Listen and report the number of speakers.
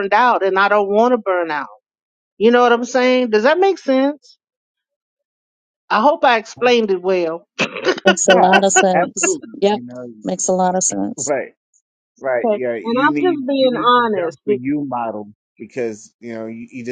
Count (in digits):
3